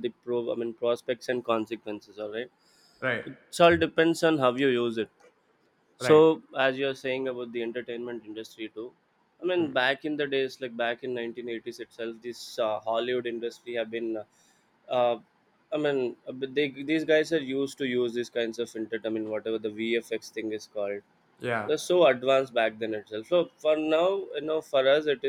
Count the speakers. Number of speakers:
2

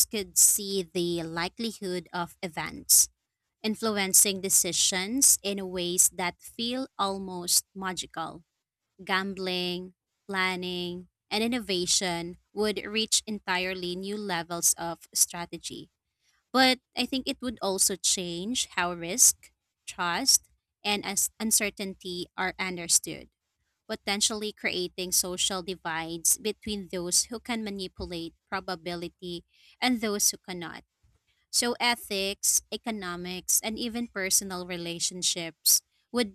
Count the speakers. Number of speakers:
1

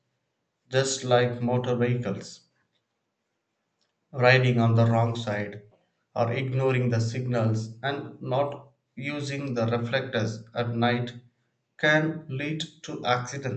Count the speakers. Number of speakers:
1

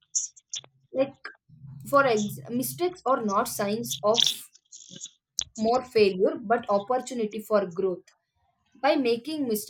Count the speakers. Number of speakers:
1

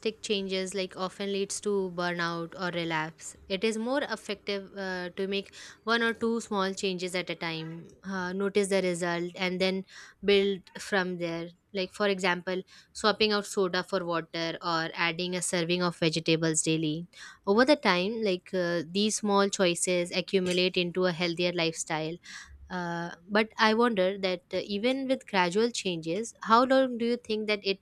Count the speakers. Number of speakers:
1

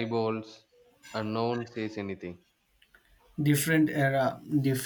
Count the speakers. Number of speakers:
2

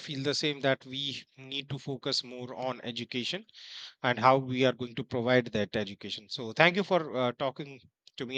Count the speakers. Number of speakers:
1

